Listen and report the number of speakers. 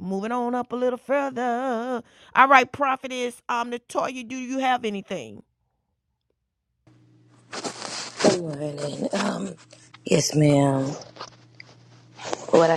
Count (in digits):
2